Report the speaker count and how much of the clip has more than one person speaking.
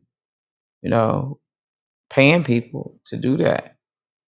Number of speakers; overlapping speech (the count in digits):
1, no overlap